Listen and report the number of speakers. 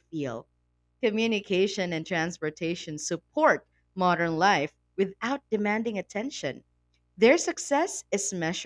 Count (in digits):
1